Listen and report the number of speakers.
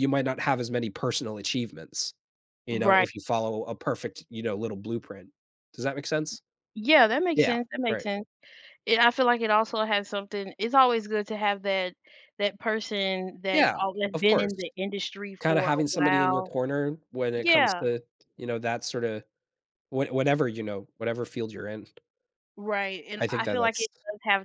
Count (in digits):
2